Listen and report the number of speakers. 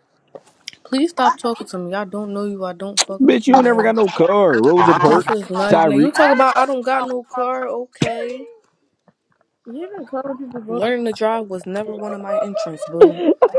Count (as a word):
three